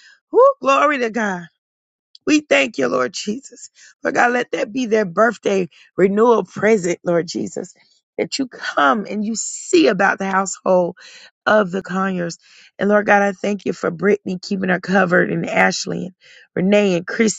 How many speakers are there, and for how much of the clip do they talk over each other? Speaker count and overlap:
1, no overlap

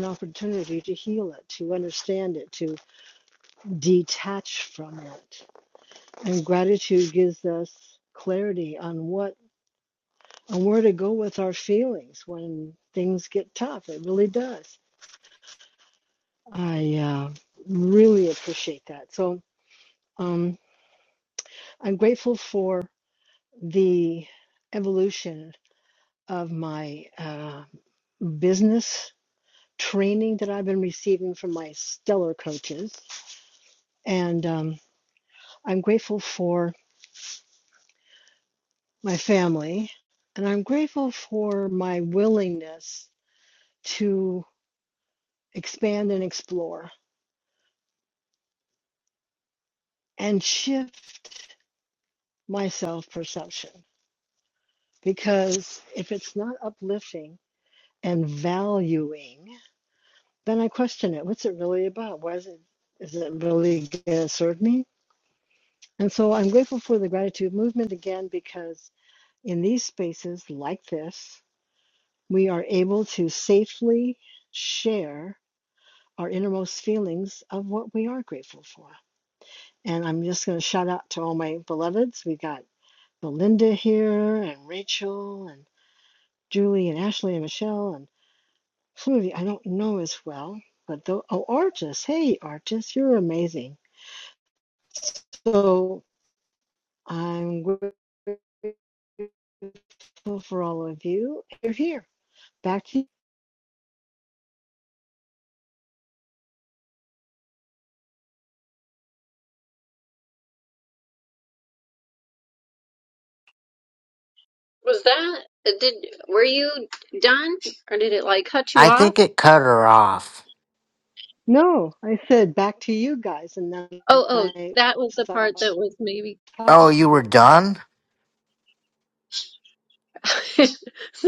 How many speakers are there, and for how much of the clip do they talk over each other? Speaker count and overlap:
3, about 1%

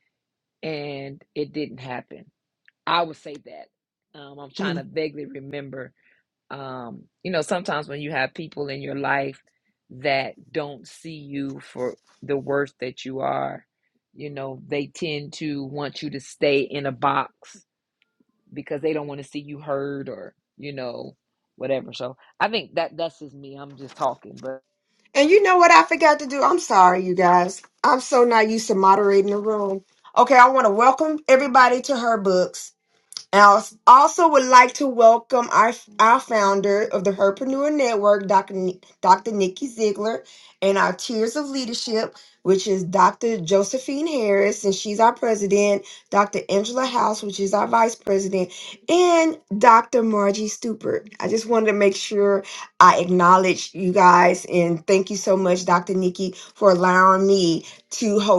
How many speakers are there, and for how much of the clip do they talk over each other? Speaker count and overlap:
2, under 1%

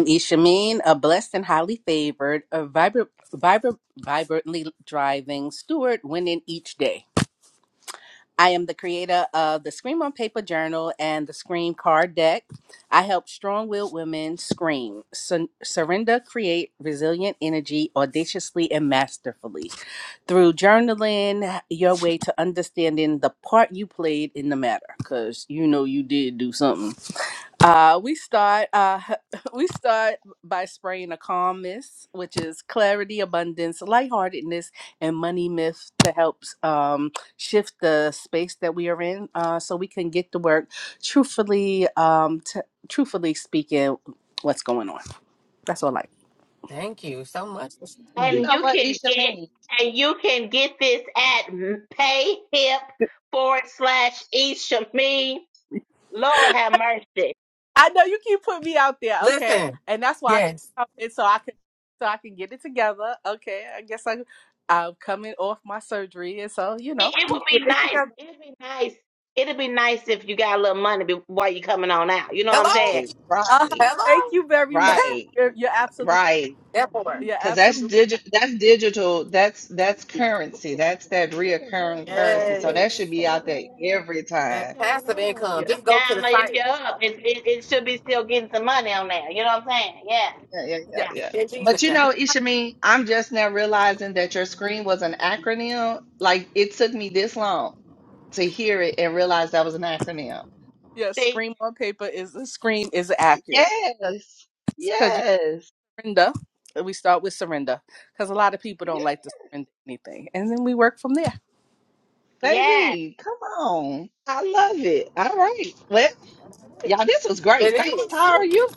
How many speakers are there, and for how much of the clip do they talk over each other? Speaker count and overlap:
4, about 9%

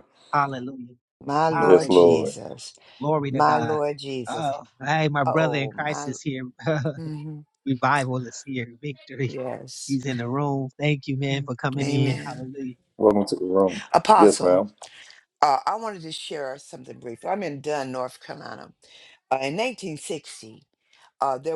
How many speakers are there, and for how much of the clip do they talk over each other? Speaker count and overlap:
3, about 19%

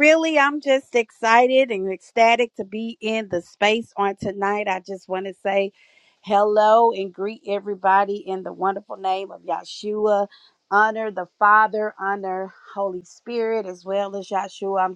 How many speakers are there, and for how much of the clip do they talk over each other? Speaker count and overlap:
1, no overlap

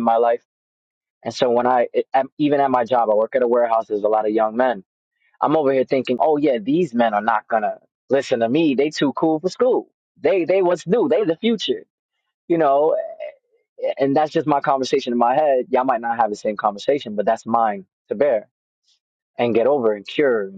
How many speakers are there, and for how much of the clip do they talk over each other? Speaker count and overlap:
1, no overlap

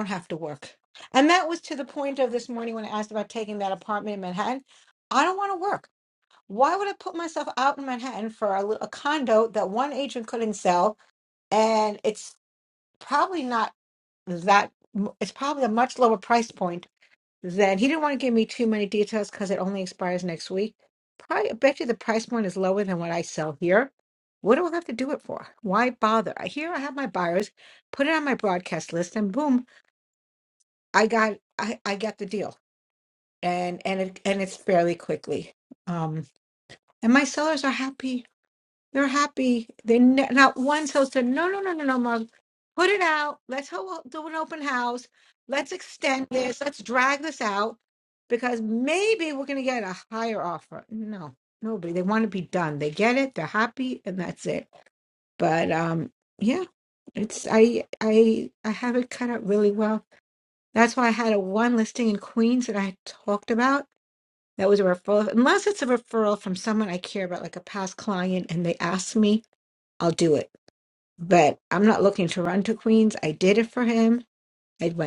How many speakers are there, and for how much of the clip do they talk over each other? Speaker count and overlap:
1, no overlap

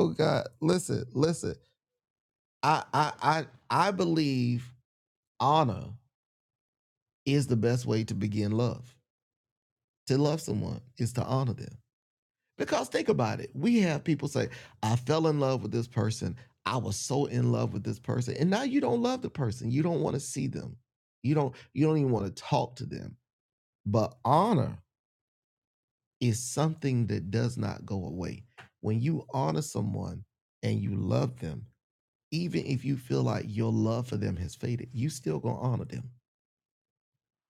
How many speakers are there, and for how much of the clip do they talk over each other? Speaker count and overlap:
1, no overlap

